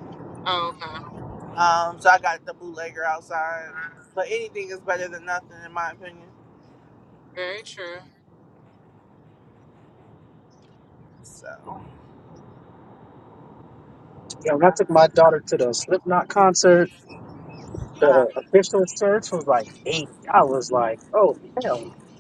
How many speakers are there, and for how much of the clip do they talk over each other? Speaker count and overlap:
3, about 3%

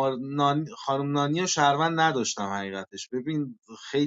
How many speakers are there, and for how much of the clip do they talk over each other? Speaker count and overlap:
1, no overlap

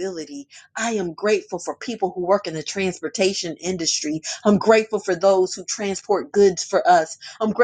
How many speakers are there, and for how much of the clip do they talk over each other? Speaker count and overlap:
1, no overlap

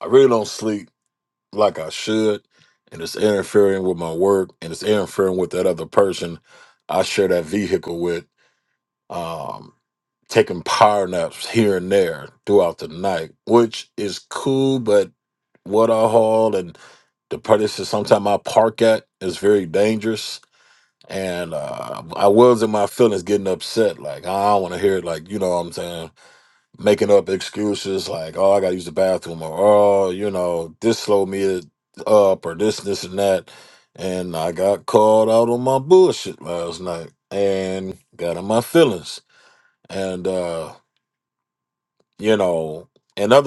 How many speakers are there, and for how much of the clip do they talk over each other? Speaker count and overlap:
1, no overlap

